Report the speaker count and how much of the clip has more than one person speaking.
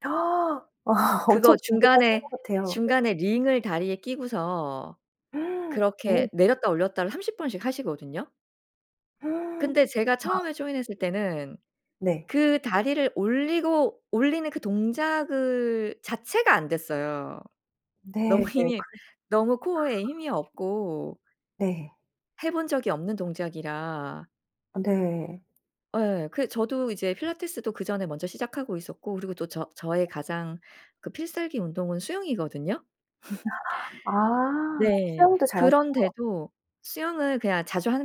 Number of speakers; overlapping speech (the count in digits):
2, about 8%